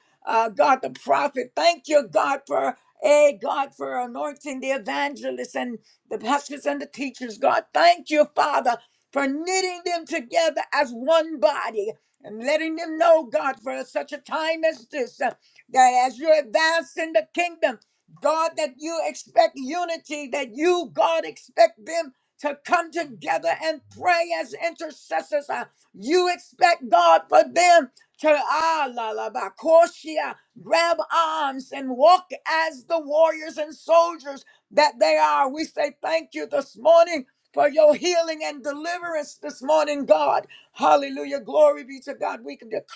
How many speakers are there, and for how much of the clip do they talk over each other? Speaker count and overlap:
1, no overlap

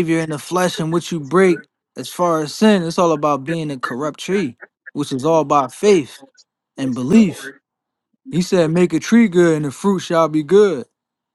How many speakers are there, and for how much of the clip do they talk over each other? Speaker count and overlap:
1, no overlap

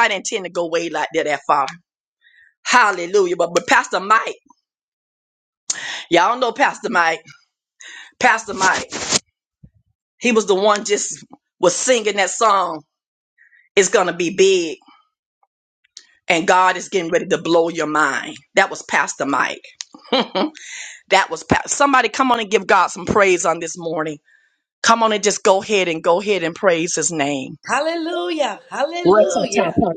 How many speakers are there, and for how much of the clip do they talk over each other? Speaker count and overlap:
2, no overlap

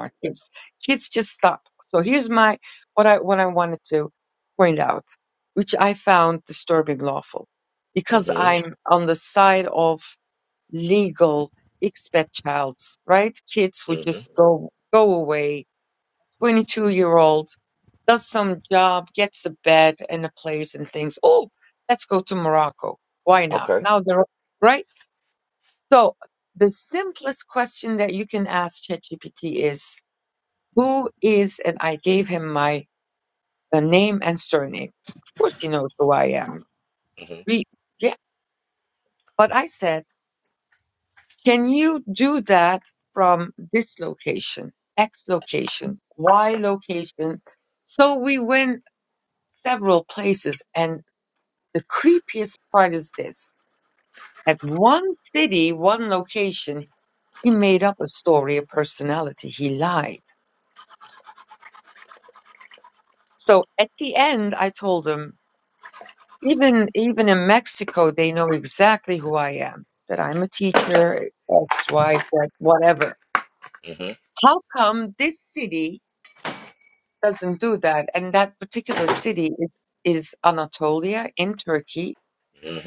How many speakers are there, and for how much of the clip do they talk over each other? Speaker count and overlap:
2, about 1%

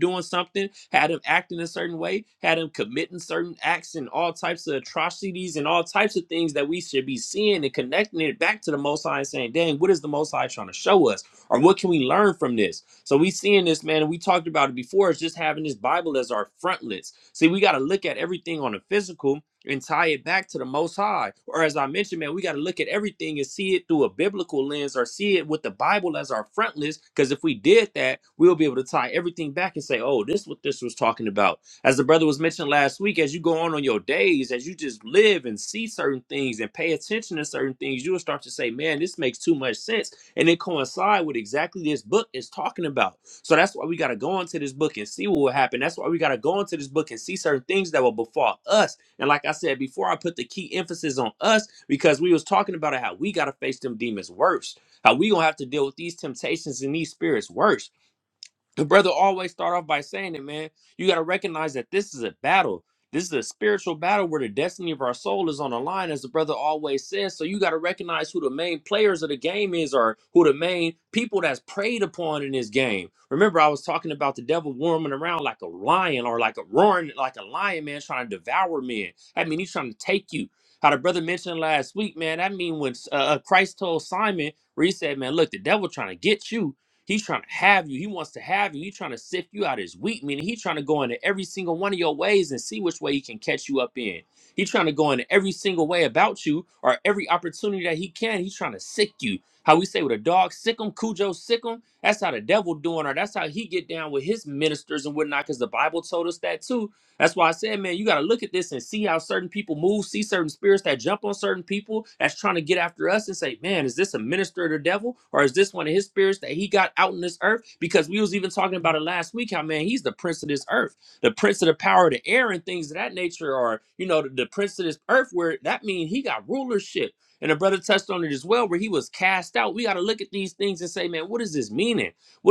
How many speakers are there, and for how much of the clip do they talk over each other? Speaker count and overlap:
1, no overlap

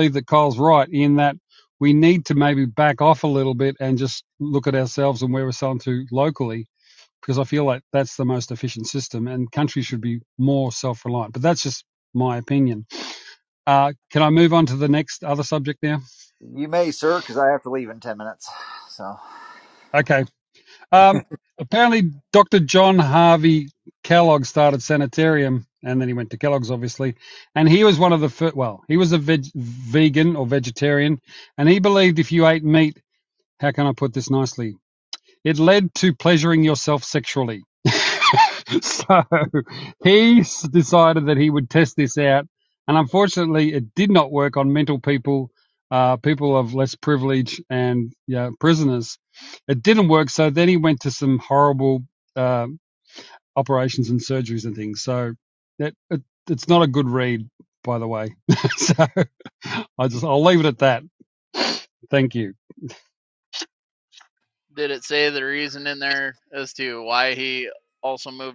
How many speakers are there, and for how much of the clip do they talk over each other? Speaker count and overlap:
3, no overlap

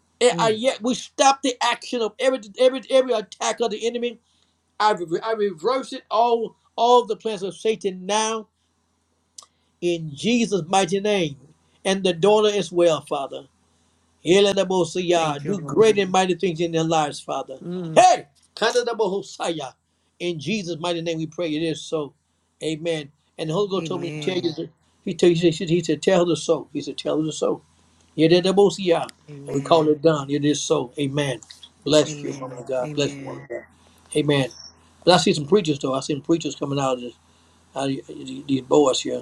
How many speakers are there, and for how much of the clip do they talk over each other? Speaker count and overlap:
2, about 9%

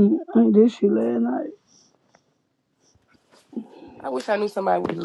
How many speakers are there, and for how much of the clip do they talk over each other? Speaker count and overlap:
2, no overlap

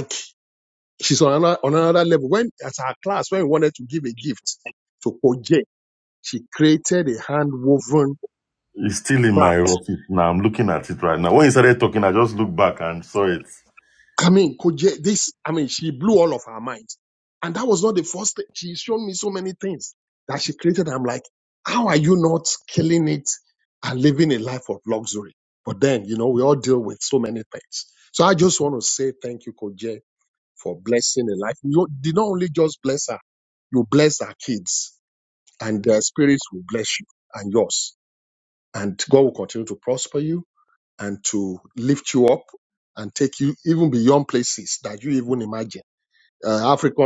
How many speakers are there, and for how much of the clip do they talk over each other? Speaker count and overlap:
2, about 1%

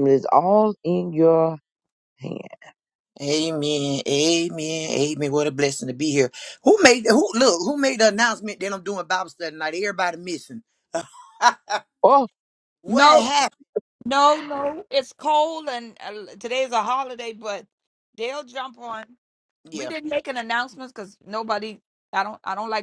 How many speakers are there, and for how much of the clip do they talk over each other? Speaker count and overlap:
3, about 3%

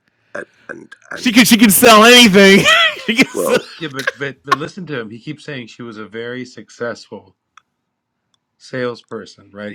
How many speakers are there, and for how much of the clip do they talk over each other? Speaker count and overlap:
3, about 6%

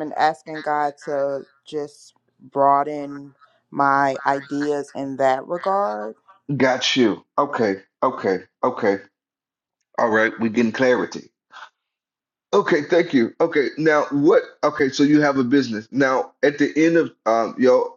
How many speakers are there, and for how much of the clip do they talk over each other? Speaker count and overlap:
2, no overlap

